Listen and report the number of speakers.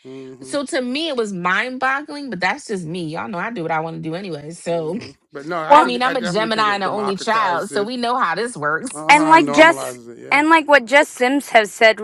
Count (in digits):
3